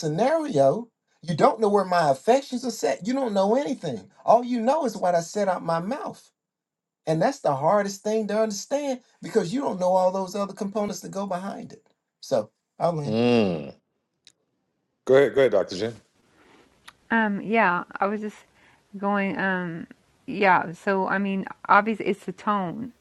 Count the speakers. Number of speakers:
three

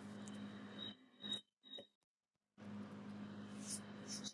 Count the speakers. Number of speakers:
zero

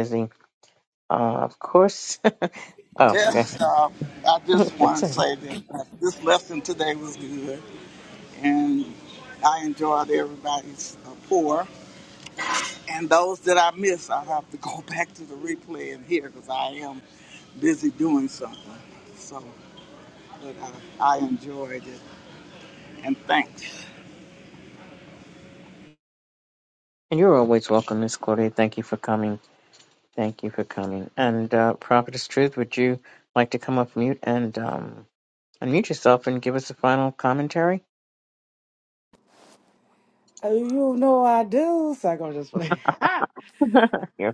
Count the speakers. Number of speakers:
three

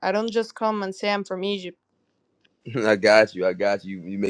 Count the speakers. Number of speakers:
two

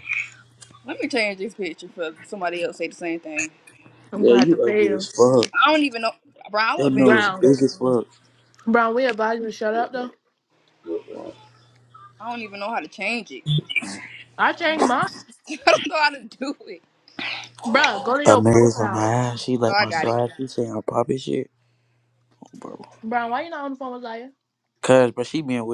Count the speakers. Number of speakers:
three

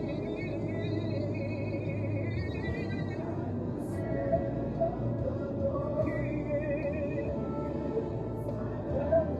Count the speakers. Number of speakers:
zero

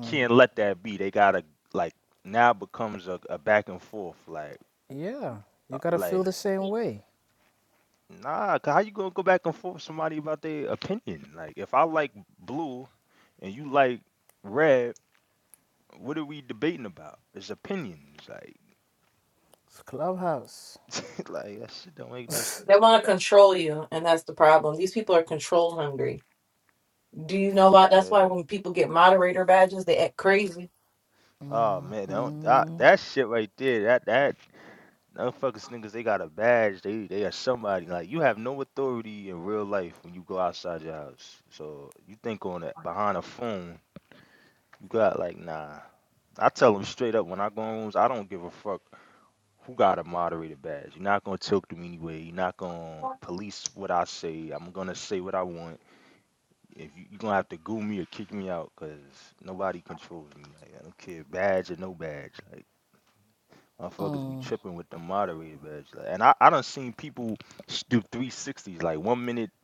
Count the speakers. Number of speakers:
three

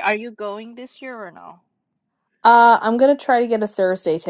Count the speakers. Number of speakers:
two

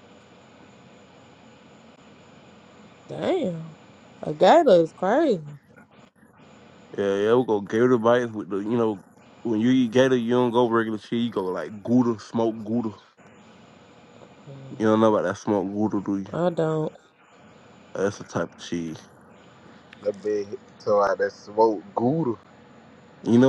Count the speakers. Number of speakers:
three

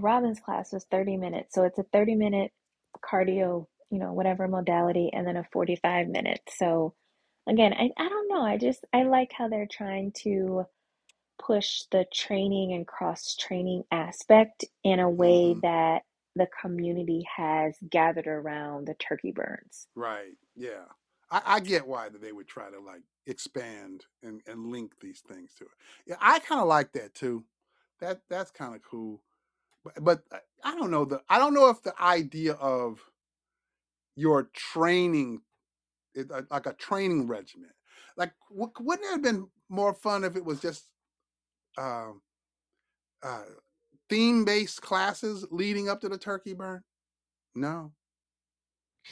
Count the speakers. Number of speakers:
two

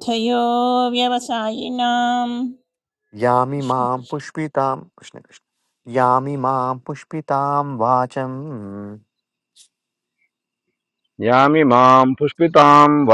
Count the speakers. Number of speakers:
three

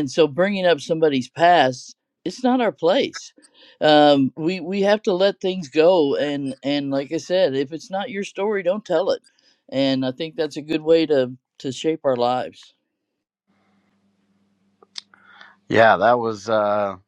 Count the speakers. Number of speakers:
two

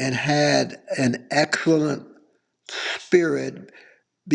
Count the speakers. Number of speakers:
one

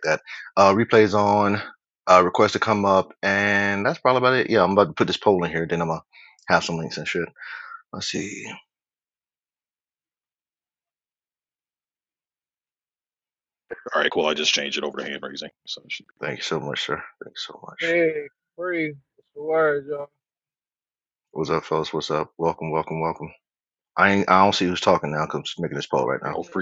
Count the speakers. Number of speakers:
three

